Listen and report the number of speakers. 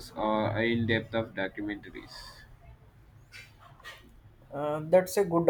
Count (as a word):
two